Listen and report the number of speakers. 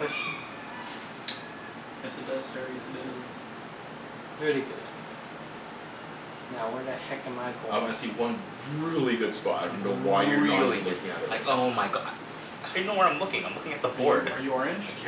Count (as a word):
four